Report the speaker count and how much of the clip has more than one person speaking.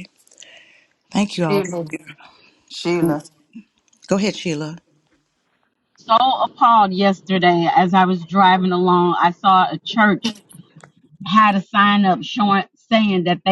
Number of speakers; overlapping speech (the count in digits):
3, about 3%